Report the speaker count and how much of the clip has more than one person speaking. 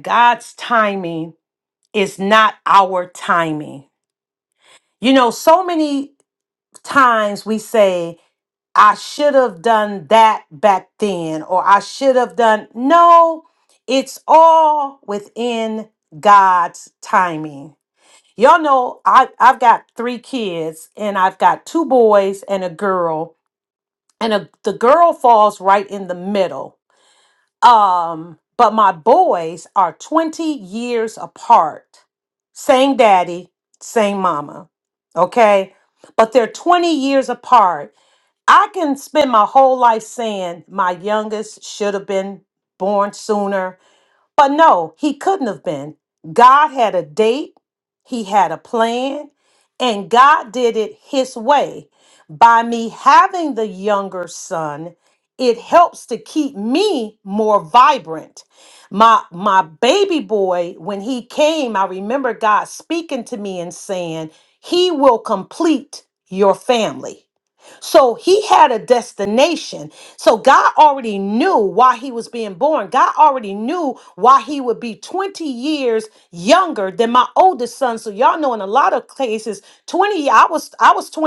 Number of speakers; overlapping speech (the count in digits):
1, no overlap